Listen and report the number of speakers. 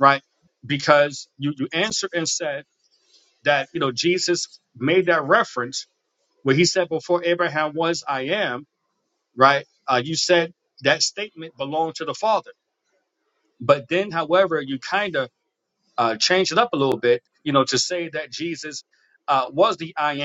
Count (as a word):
one